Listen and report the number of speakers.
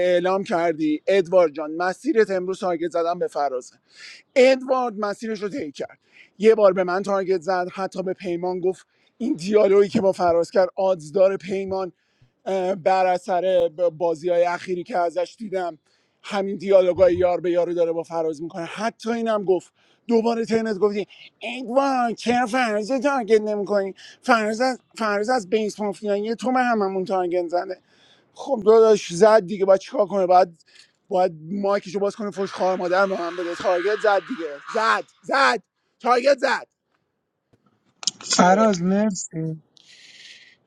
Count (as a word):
two